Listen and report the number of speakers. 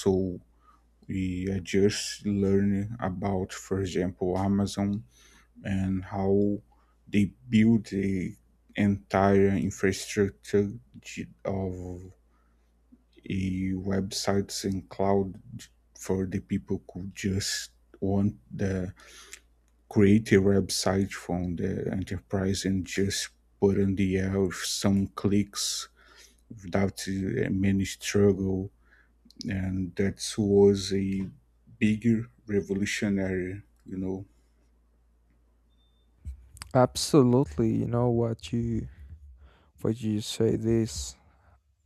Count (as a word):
two